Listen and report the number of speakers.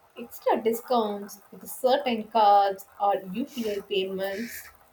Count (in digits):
1